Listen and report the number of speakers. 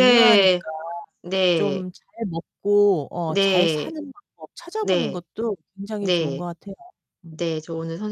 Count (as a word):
two